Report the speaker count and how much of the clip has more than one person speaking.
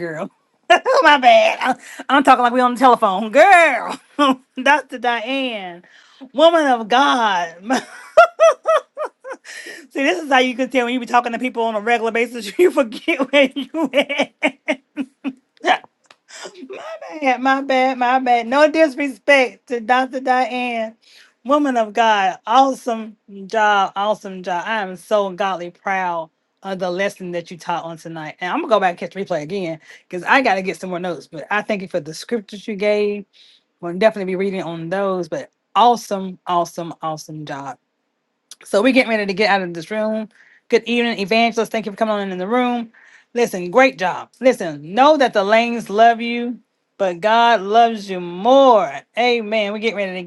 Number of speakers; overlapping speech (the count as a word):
one, no overlap